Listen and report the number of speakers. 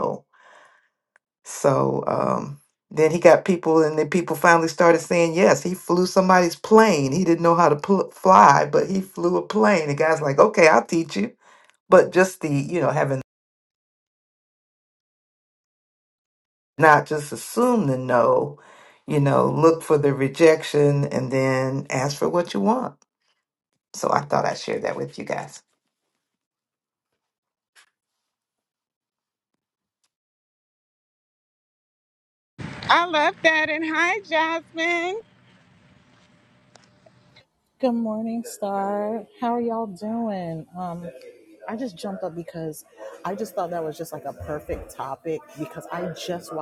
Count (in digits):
3